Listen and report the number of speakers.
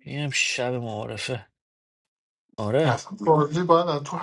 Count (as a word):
two